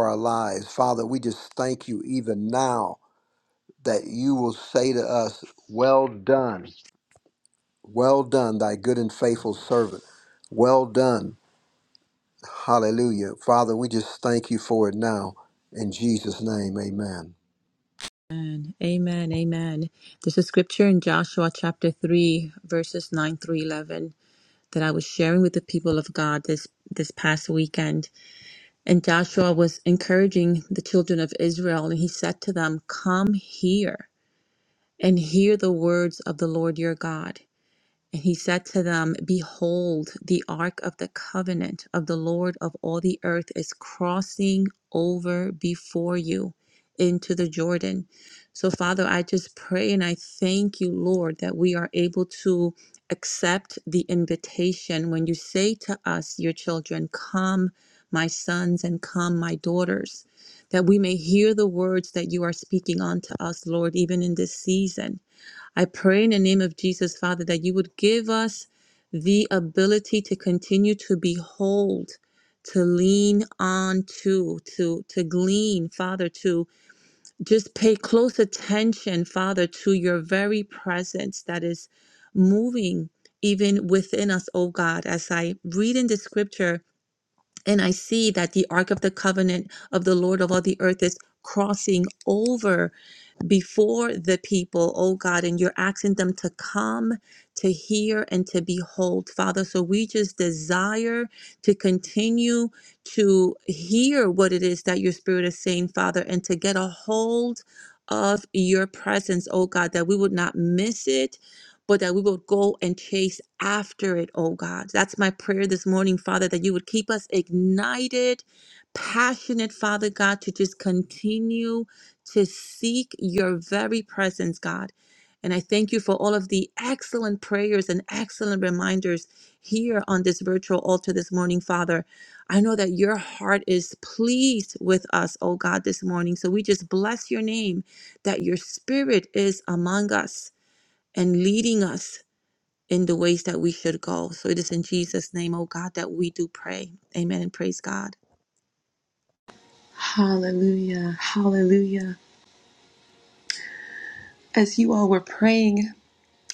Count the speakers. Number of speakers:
3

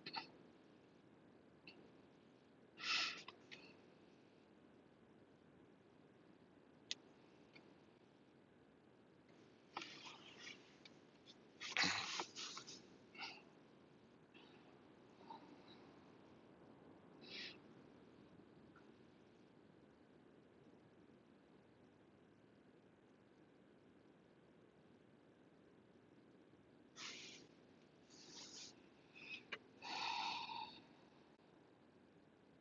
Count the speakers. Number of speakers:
0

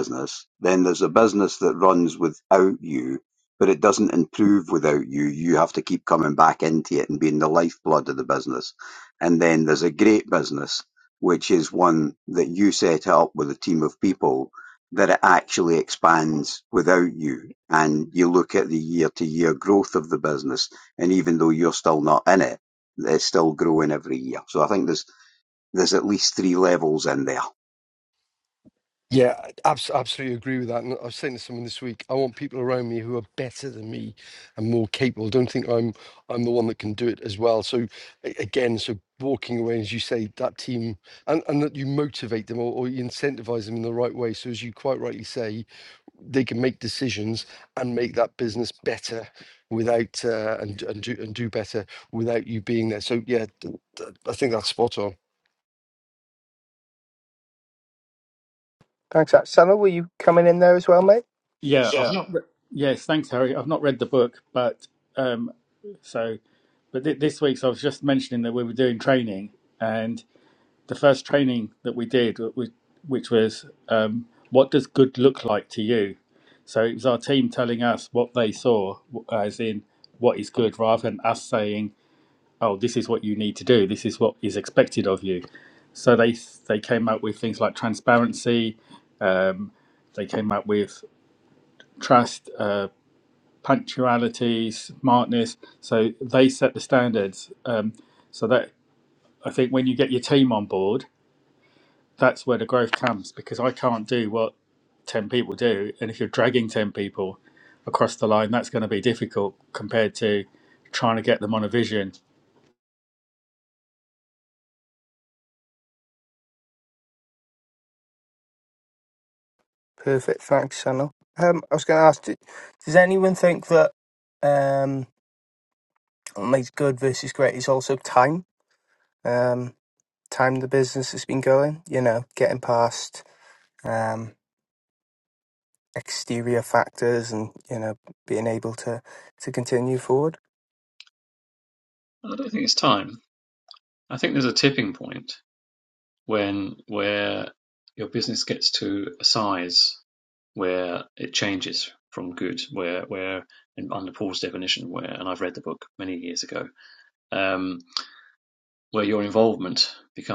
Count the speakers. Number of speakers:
5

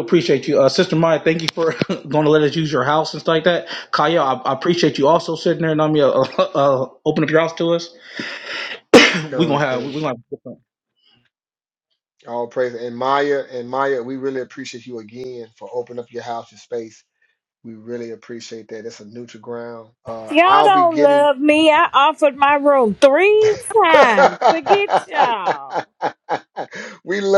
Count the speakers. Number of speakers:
3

